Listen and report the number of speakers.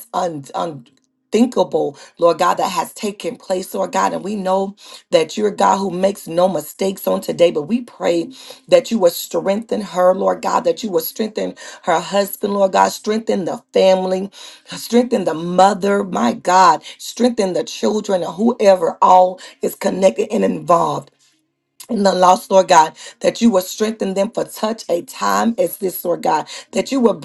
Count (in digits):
1